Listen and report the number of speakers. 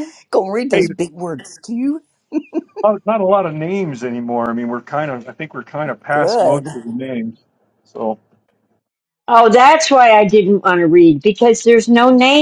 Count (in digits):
3